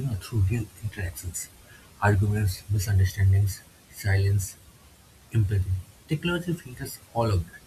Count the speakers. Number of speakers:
one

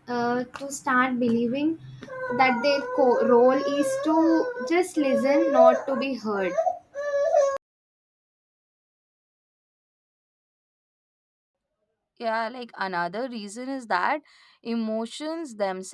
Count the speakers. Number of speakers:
two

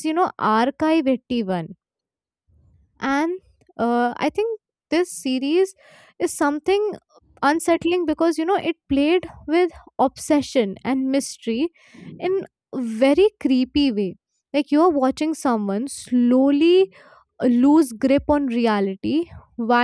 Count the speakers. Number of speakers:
one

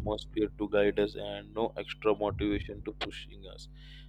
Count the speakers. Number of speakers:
one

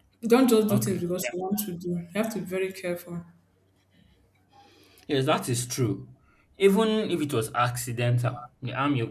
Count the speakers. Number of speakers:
two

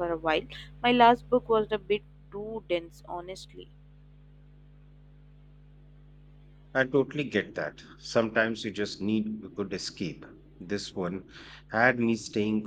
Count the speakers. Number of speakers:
two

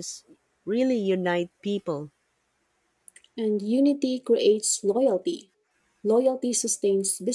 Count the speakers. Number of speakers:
two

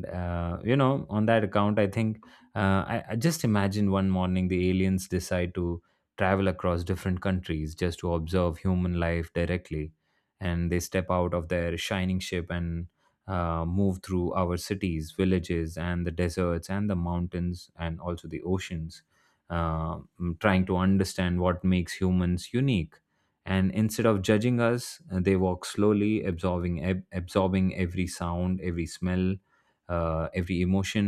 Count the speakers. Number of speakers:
one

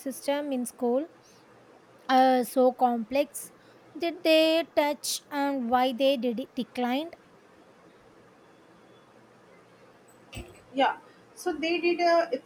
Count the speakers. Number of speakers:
two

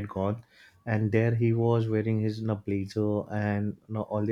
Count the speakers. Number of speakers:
one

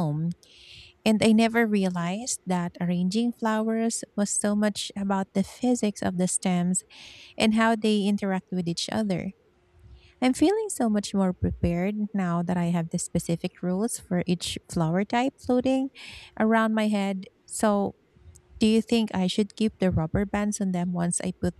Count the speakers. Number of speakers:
one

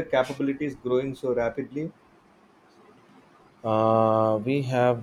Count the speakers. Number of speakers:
two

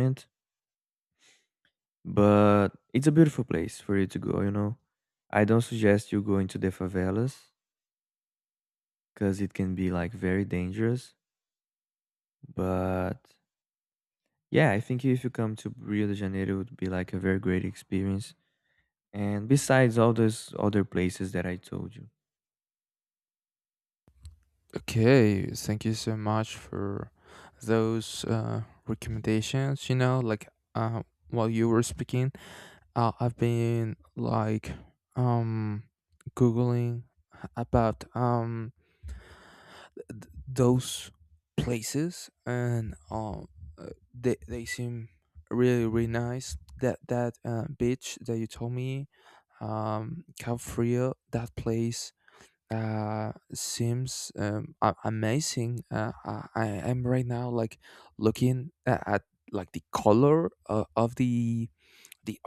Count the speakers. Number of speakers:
two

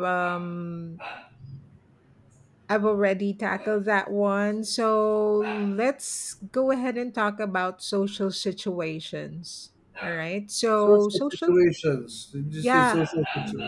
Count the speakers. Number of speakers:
two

